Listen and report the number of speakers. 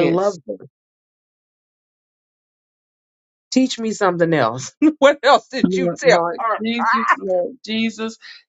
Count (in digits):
2